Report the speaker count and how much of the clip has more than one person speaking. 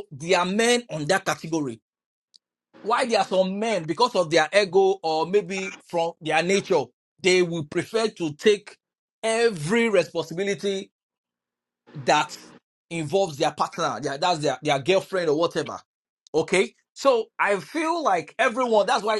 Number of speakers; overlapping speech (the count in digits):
1, no overlap